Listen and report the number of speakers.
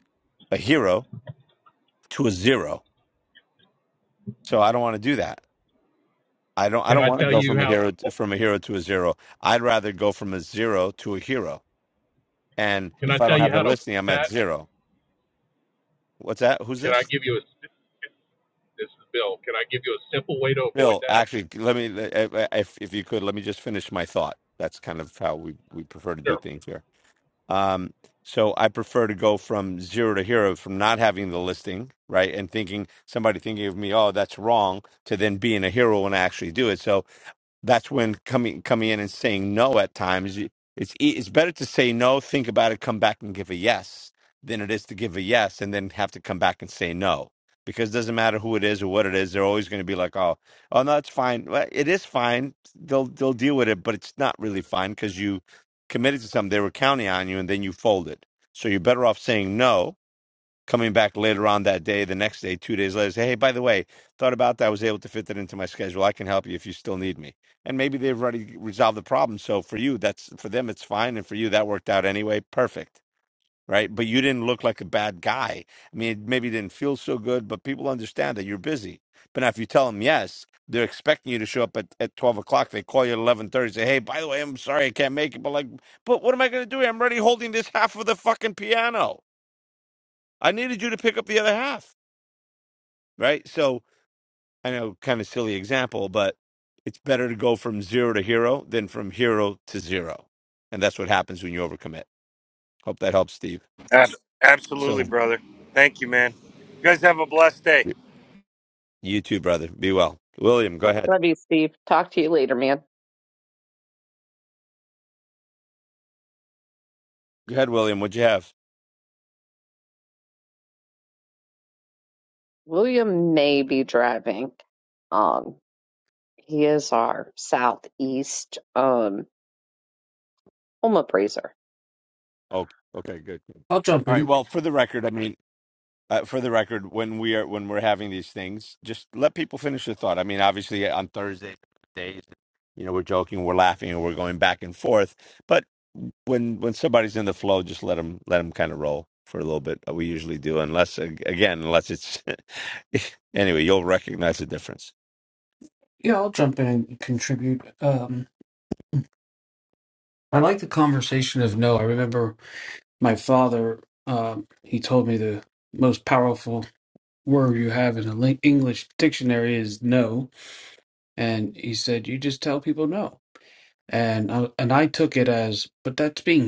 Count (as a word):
five